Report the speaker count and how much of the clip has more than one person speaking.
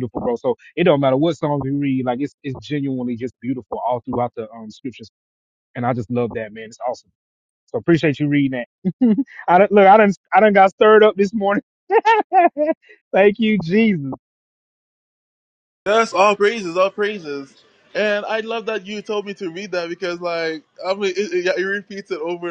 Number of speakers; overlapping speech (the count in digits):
2, no overlap